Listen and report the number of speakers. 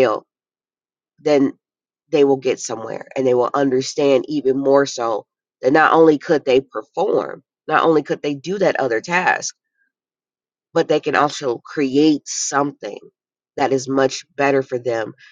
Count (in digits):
1